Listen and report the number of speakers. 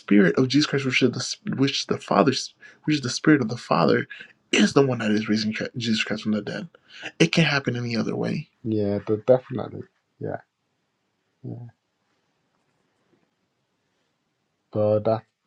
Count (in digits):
2